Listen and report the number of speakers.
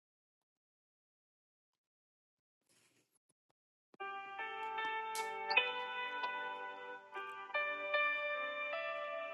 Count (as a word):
zero